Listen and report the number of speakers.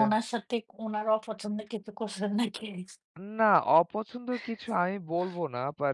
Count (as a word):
two